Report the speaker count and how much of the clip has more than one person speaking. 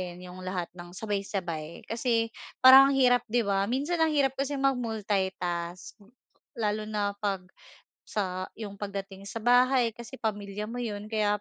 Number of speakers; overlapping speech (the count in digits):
1, no overlap